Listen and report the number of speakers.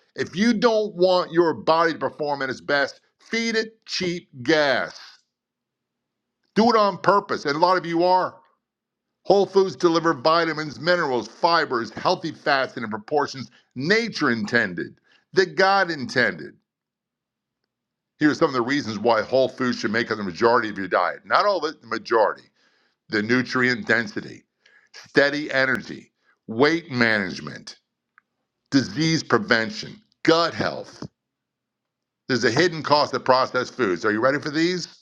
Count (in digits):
1